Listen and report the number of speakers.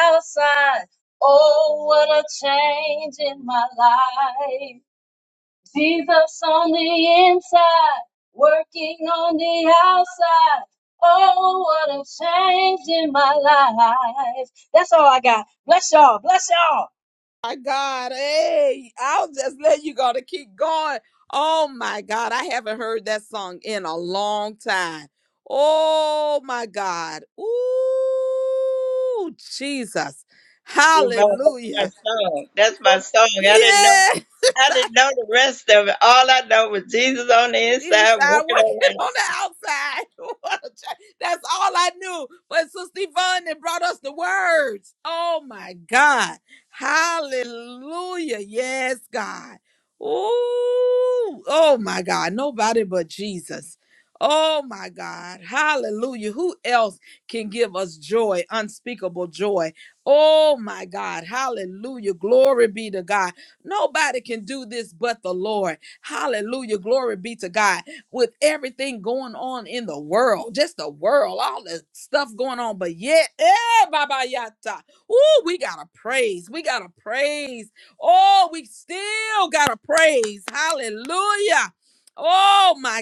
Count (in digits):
3